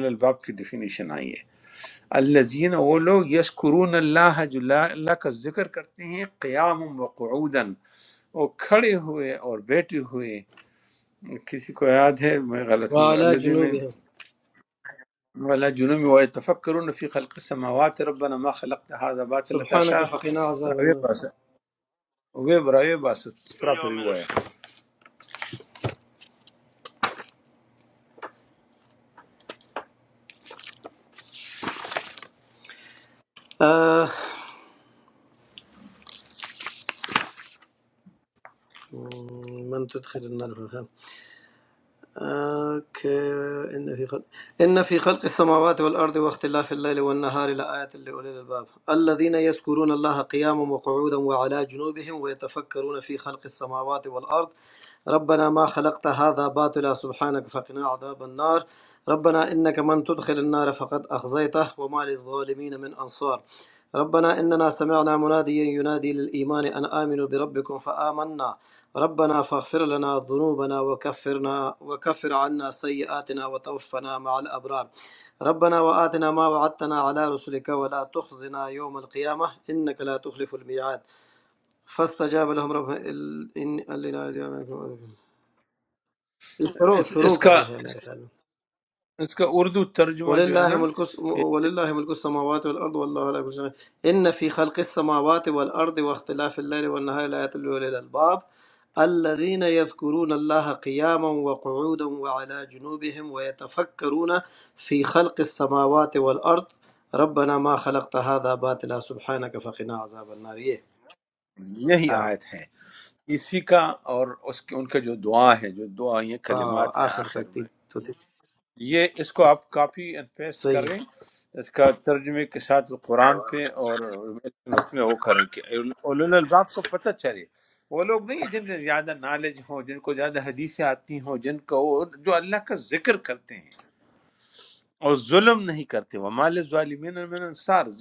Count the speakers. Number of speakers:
2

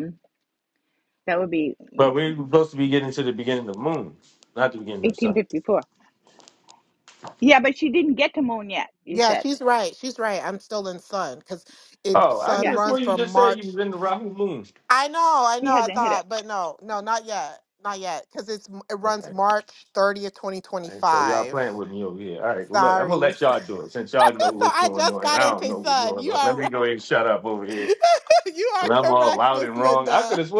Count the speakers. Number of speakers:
3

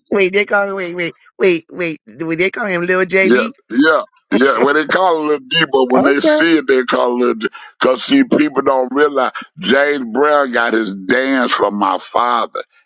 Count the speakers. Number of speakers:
2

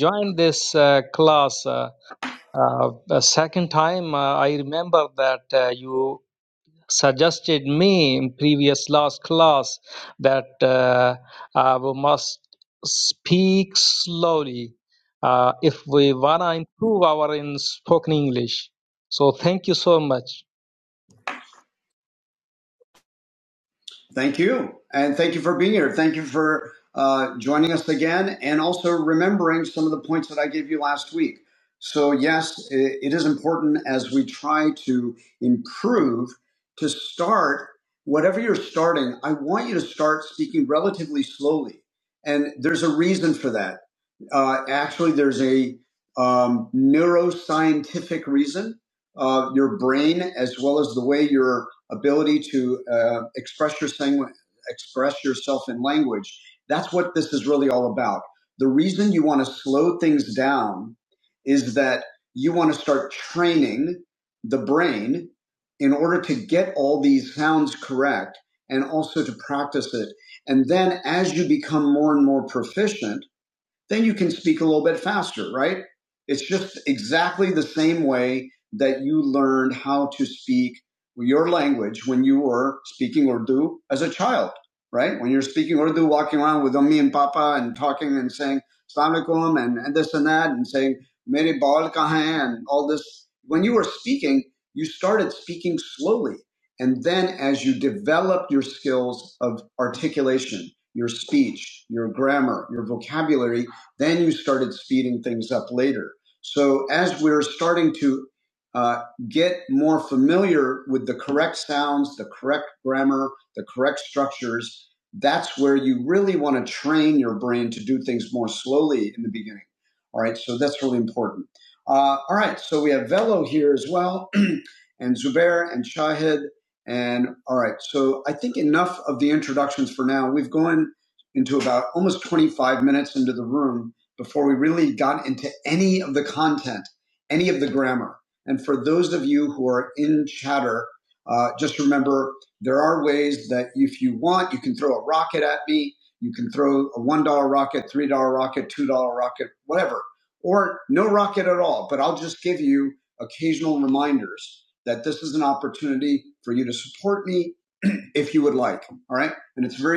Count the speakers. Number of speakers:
2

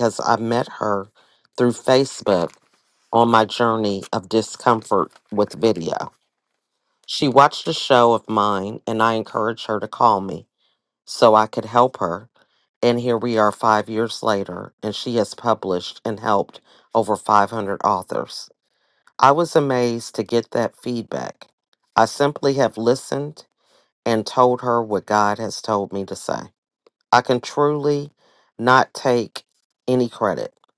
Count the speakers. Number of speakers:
1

